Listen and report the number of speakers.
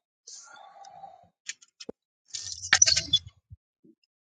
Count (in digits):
0